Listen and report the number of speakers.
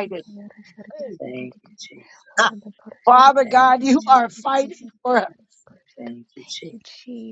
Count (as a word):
three